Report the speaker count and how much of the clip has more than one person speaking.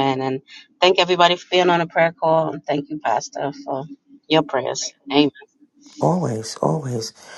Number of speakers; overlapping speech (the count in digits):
2, no overlap